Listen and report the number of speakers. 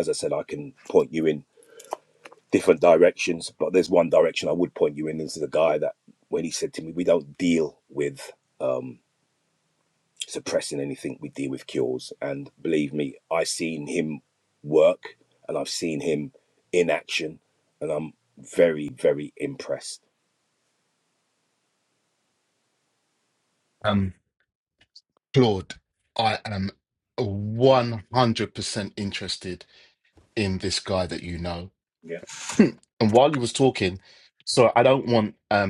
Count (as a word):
two